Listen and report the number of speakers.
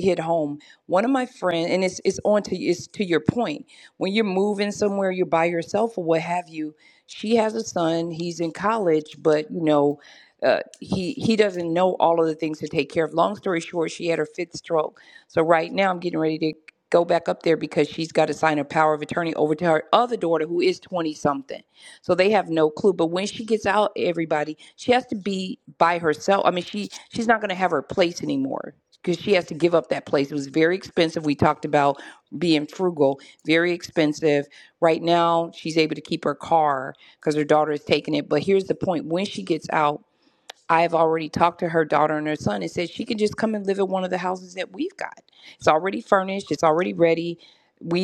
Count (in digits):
1